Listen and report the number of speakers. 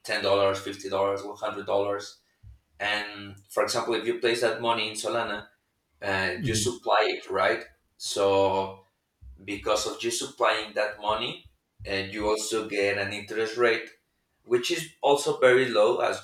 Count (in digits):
1